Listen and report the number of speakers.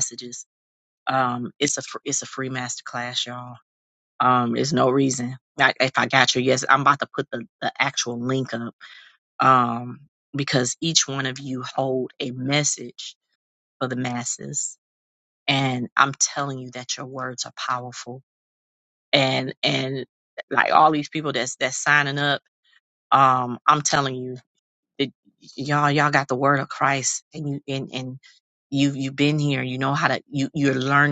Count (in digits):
1